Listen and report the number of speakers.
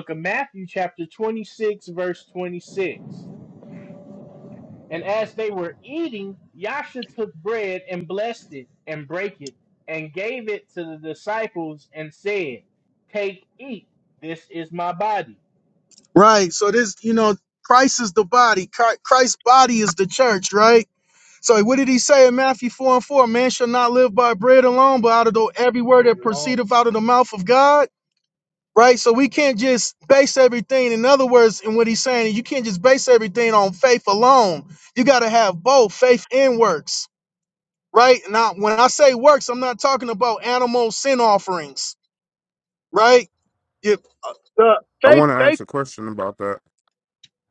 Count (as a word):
three